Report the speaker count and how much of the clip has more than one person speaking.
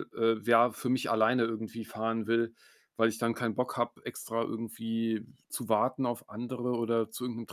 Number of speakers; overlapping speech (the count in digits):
1, no overlap